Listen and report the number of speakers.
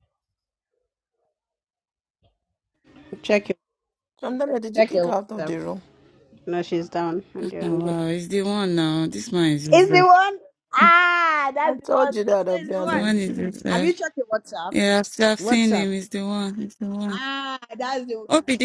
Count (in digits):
3